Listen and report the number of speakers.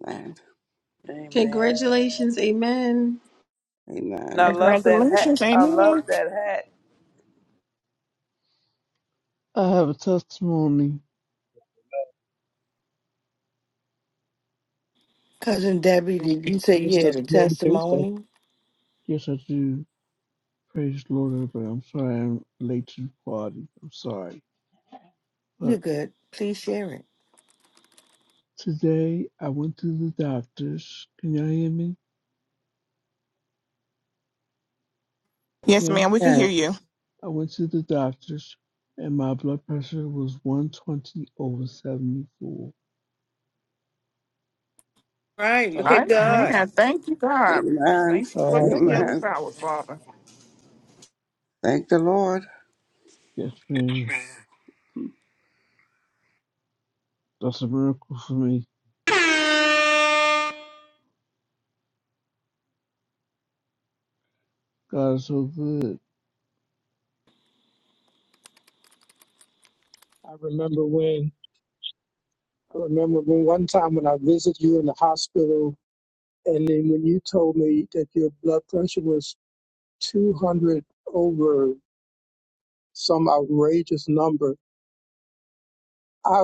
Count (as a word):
seven